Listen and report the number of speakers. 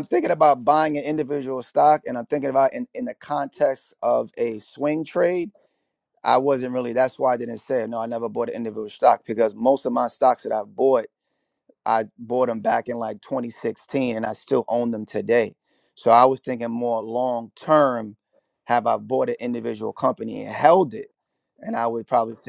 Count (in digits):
1